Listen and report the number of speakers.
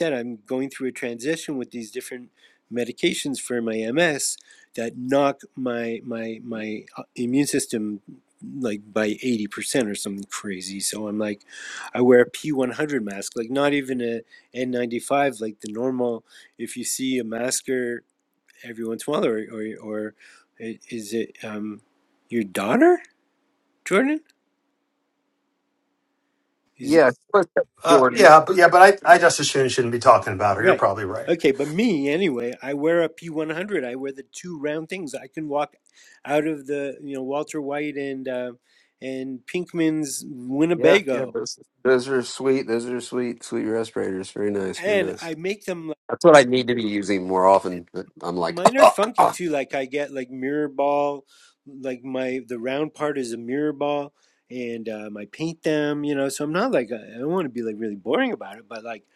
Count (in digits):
3